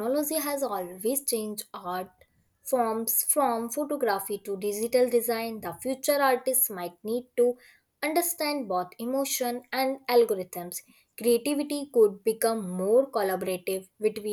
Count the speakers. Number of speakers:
one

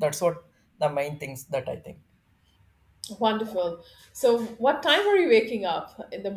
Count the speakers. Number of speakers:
two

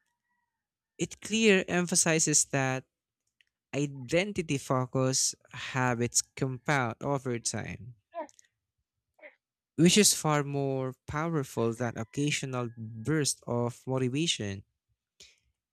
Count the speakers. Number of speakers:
one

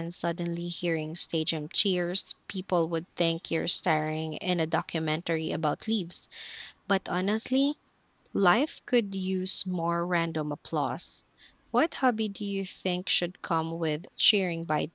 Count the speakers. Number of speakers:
one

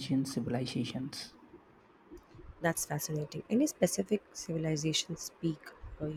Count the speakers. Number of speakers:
two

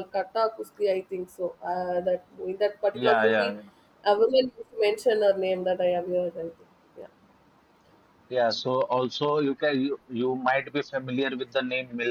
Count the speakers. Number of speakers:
two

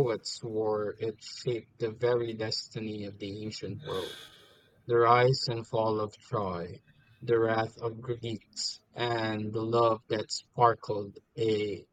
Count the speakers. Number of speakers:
one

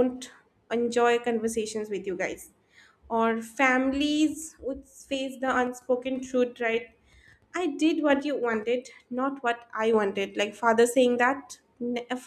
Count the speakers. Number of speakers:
one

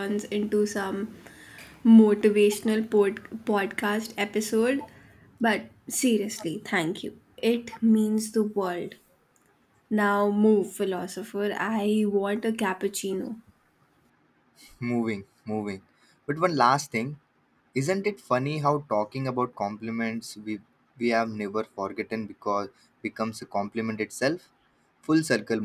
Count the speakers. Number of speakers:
two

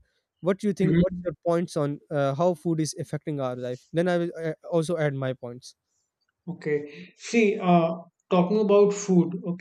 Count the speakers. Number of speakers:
two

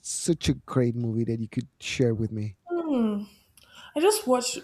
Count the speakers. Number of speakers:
two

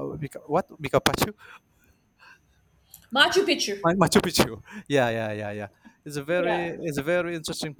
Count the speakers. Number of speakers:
two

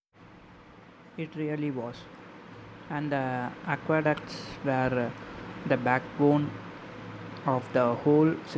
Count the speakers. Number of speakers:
one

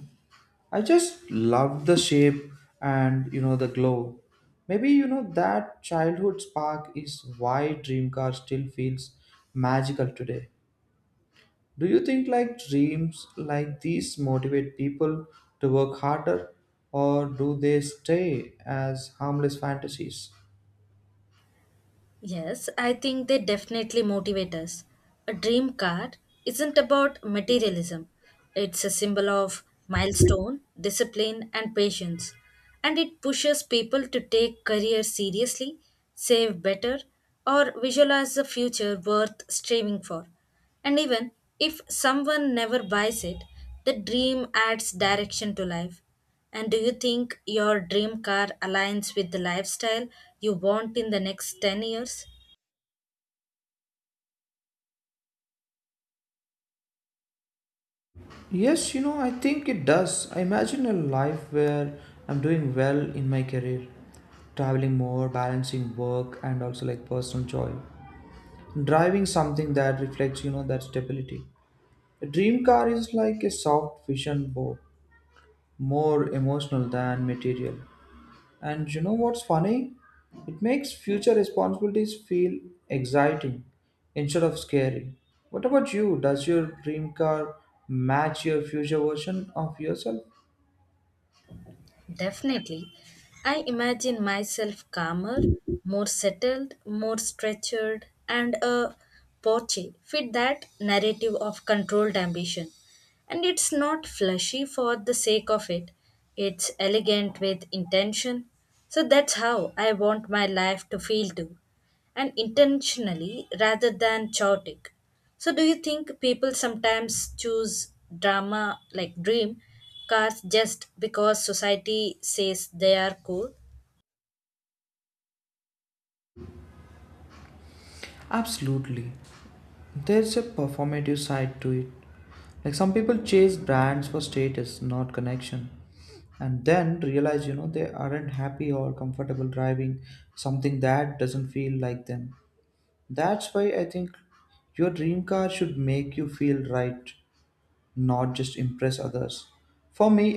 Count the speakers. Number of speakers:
two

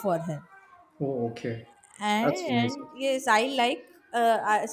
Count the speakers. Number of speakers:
two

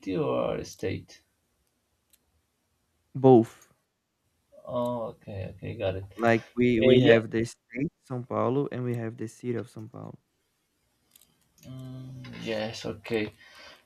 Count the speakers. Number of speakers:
two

